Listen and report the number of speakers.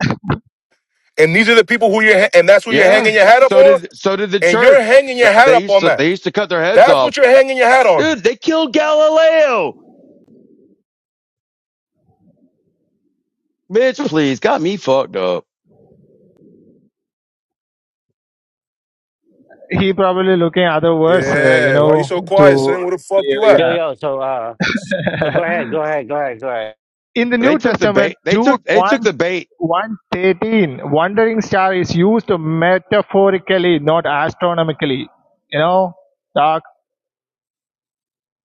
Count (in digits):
4